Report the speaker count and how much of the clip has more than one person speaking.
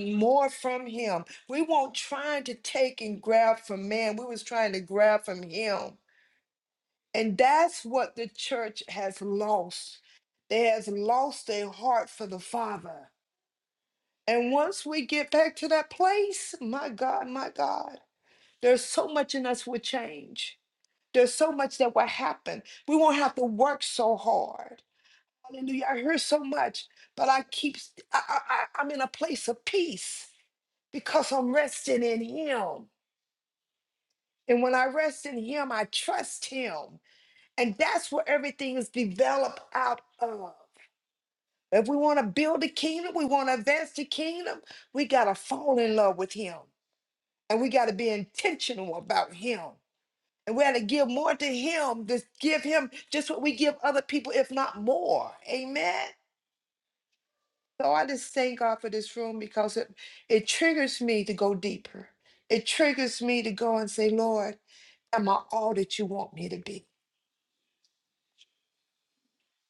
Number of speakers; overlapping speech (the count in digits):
1, no overlap